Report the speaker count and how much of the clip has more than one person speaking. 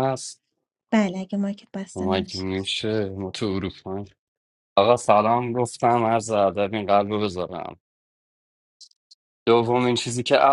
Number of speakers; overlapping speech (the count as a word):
two, about 4%